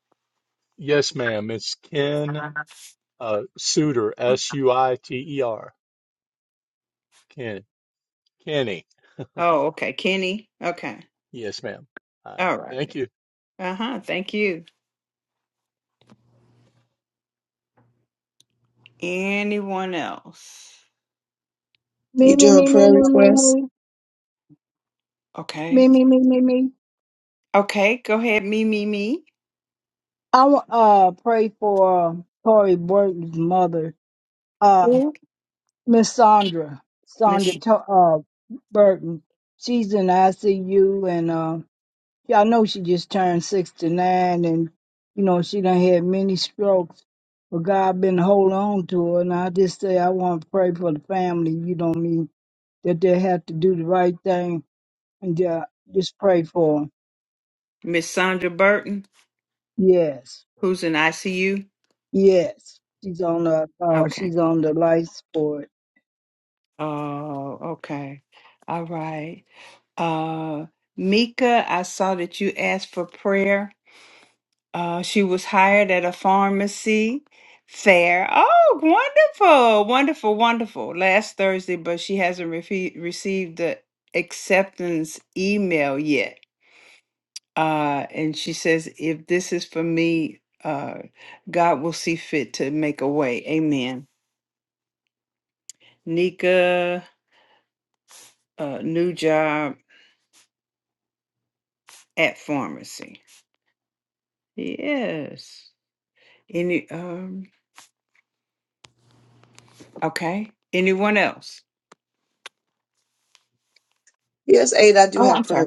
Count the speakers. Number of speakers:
4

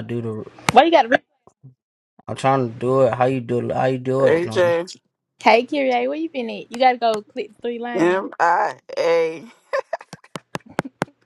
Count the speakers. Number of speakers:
3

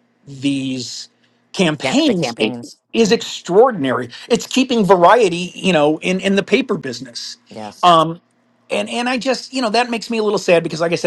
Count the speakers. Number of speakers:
2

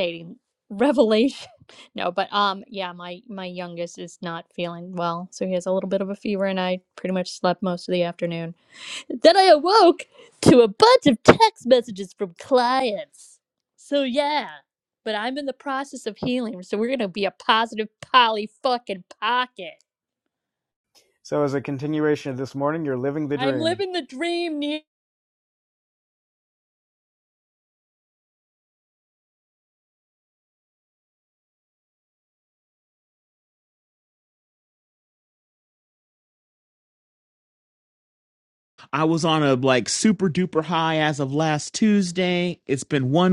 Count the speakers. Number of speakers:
3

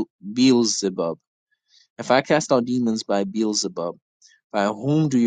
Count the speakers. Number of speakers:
1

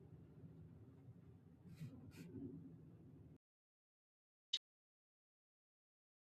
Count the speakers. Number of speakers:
0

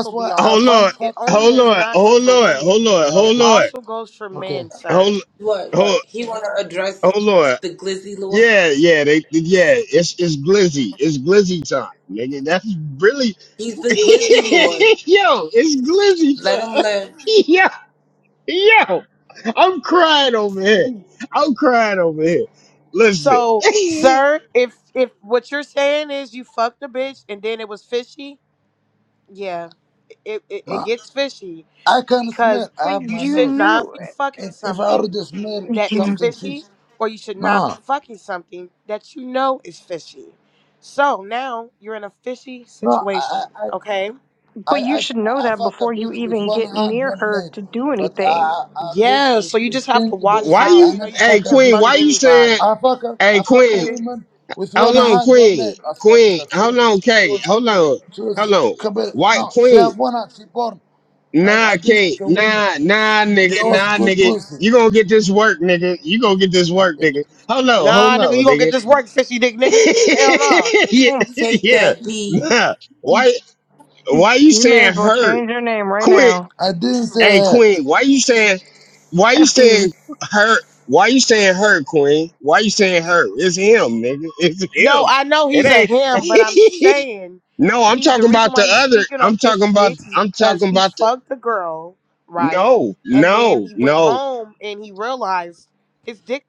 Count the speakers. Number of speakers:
5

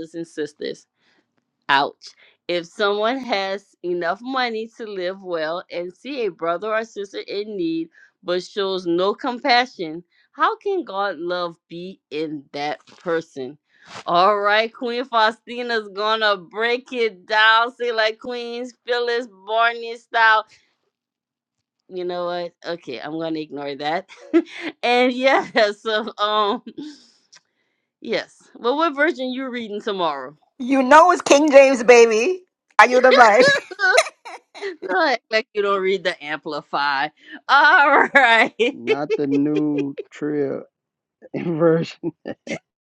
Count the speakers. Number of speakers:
3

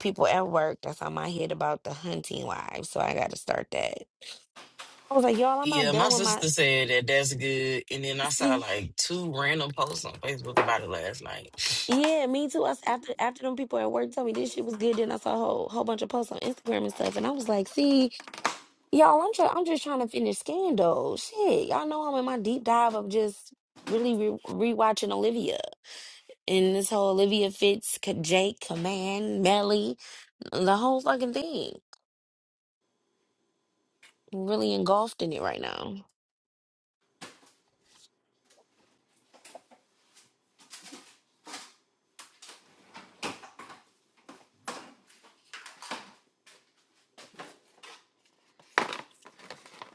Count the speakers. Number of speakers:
2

